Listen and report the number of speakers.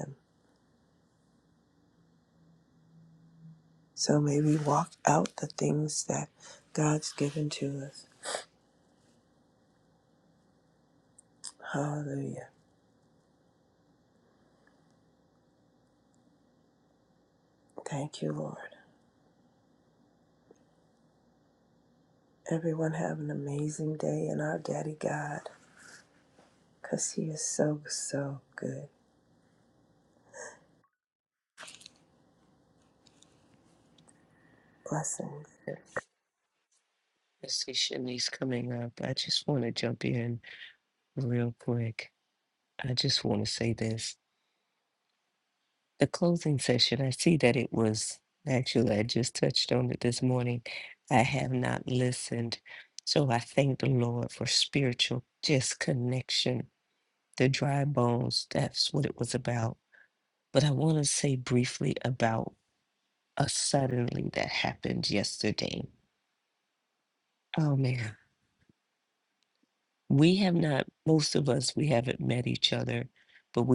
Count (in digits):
2